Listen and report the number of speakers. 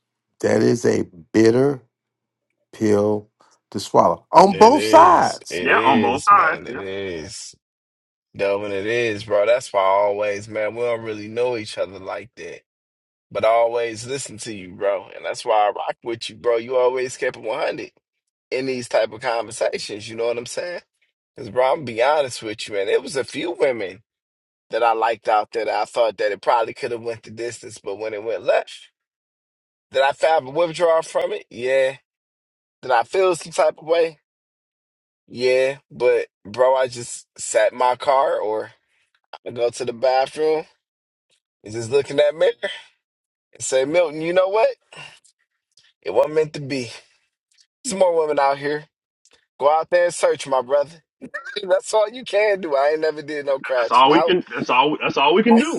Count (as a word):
three